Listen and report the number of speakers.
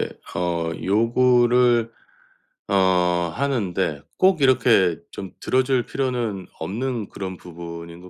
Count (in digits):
1